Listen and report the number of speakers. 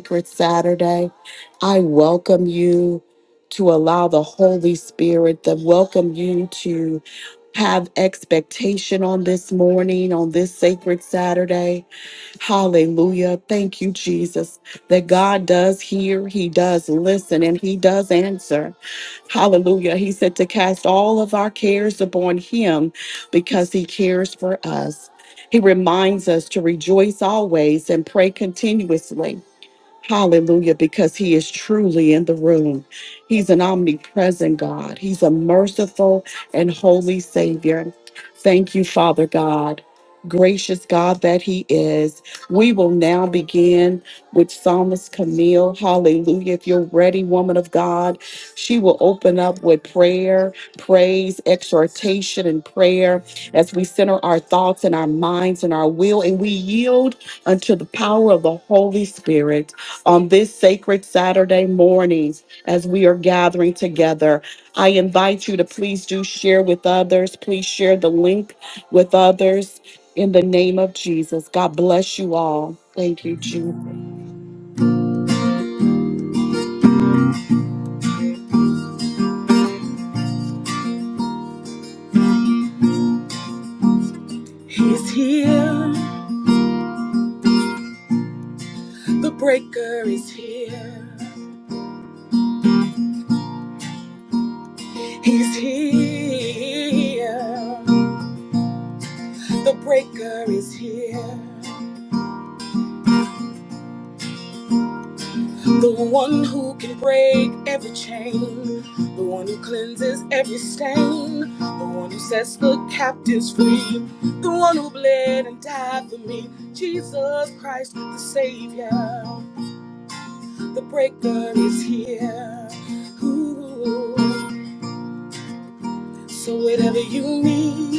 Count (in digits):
2